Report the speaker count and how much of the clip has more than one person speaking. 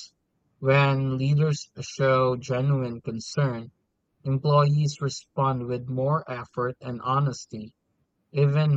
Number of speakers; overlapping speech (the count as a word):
one, no overlap